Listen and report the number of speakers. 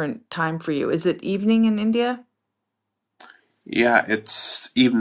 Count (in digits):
2